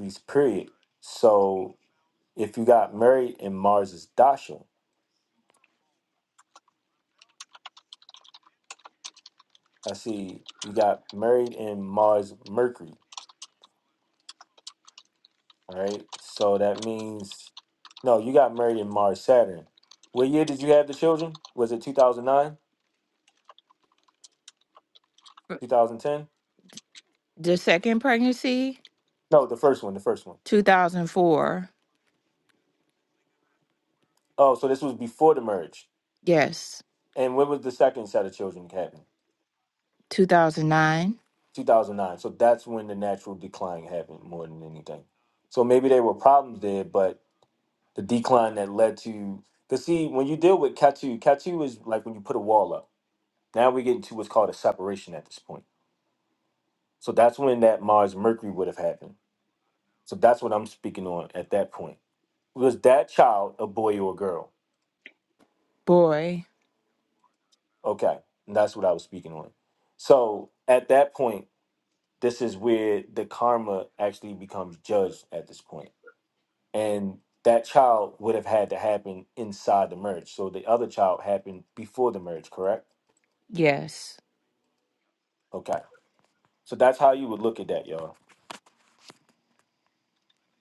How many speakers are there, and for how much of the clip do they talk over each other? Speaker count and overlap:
two, no overlap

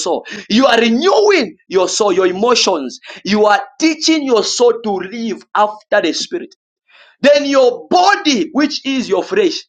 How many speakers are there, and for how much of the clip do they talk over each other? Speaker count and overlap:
one, no overlap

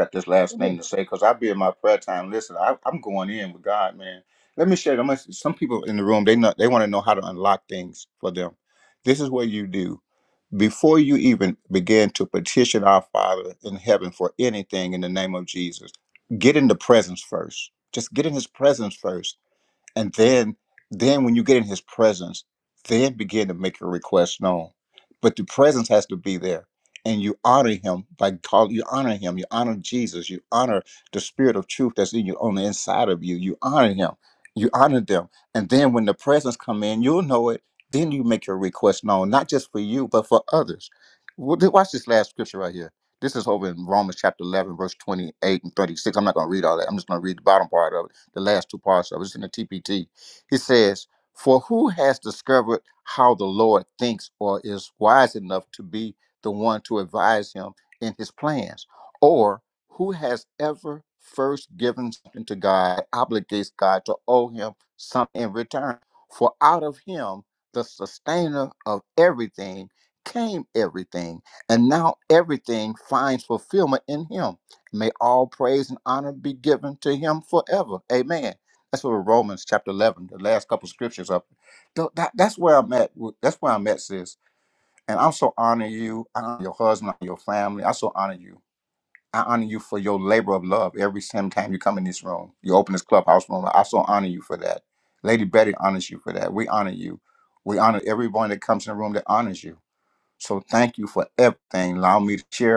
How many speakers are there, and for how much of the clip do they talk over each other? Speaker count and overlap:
one, no overlap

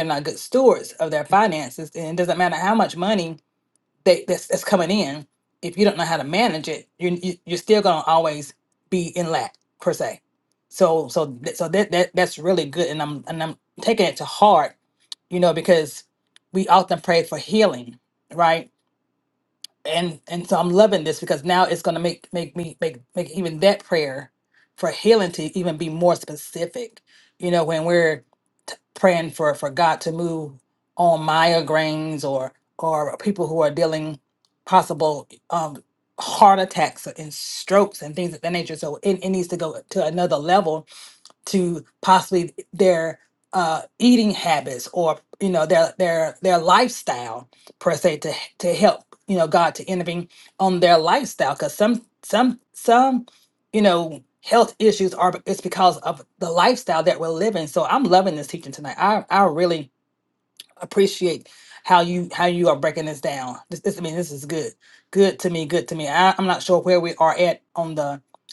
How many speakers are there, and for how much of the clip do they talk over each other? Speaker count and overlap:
one, no overlap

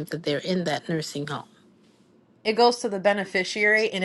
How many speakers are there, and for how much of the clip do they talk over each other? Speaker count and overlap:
two, no overlap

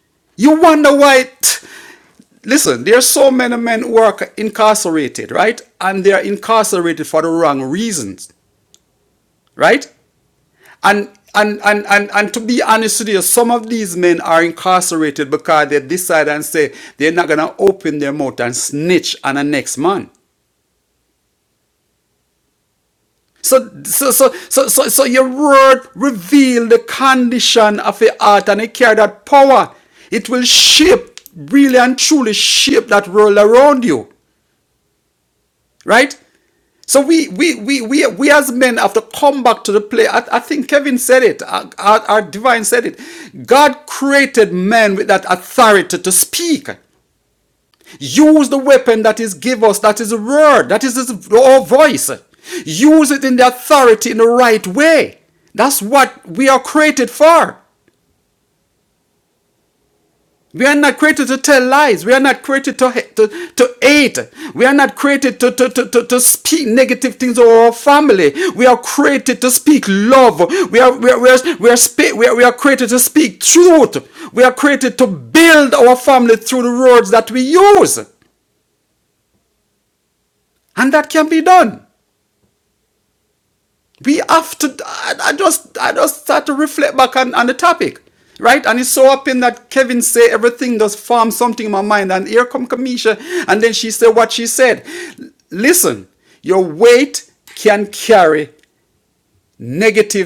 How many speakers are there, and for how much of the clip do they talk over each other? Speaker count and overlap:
one, no overlap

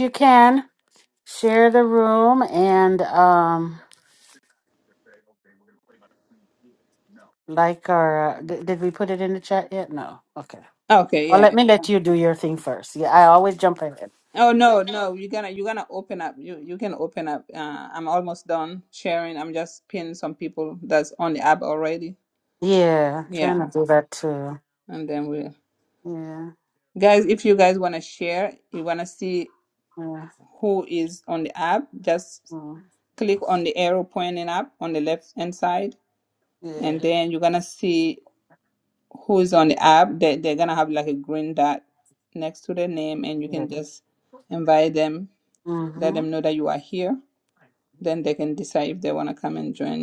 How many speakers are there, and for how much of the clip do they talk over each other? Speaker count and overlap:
two, about 3%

